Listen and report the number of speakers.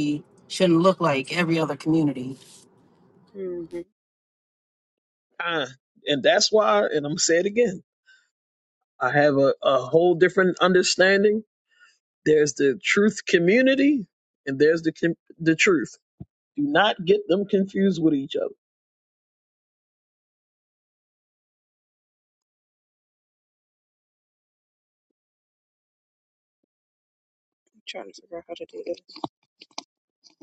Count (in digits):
3